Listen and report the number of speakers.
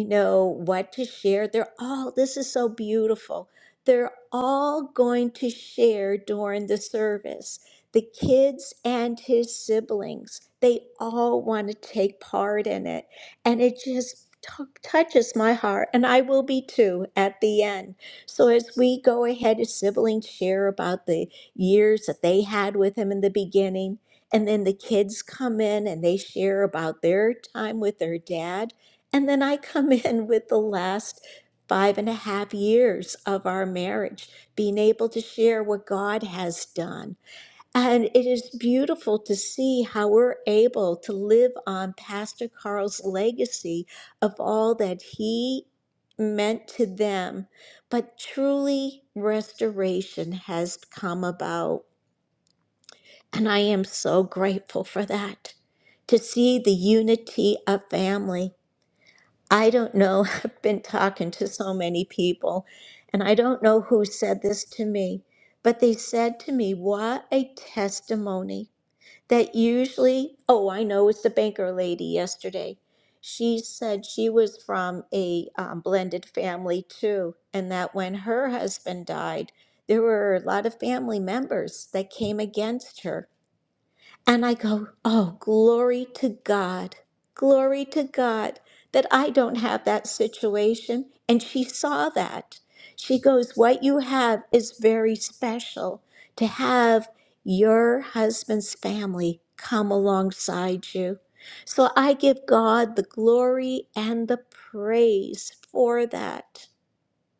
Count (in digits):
1